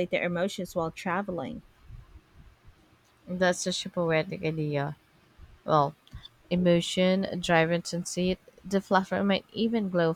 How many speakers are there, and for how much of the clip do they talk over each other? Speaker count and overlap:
2, no overlap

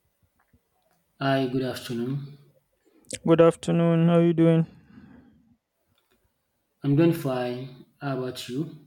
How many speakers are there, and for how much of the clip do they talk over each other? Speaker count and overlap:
2, no overlap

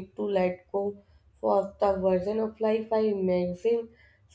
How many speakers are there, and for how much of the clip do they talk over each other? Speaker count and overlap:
1, no overlap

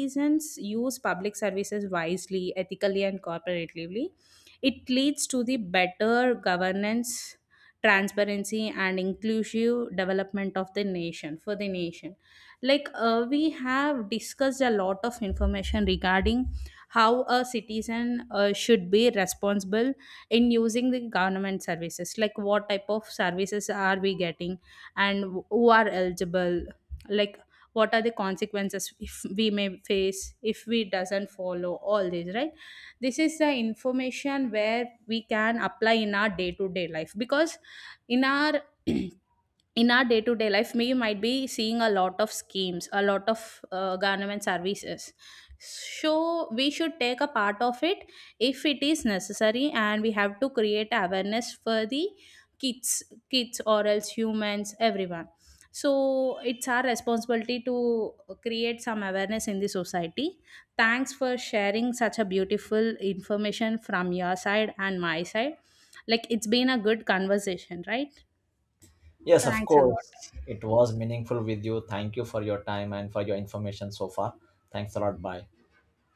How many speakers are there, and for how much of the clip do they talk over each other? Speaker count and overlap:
2, about 1%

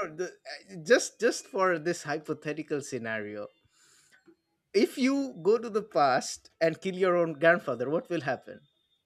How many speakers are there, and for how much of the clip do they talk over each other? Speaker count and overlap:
1, no overlap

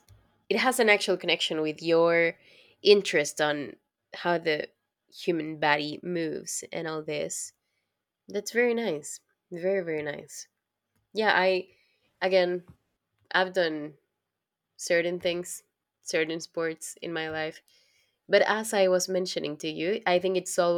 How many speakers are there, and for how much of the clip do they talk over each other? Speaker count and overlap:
1, no overlap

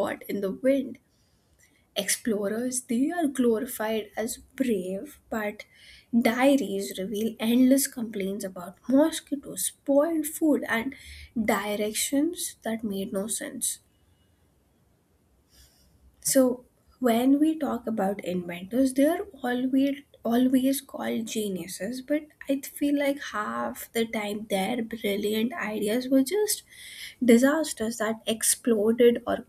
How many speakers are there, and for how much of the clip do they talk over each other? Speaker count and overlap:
1, no overlap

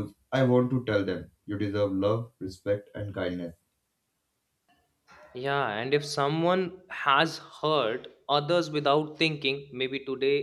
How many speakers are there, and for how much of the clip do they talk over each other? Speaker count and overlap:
2, no overlap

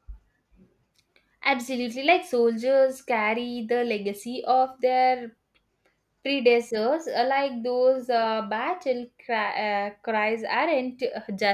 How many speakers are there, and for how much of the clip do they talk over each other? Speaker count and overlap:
1, no overlap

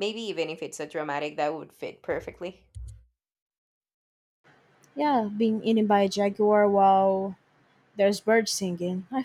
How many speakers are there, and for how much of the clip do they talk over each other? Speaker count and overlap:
2, no overlap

